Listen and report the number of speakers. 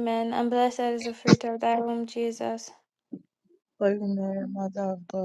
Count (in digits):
2